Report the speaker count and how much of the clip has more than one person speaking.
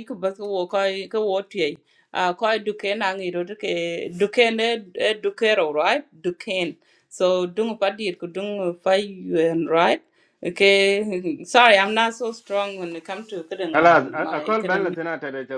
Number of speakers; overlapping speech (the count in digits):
2, about 6%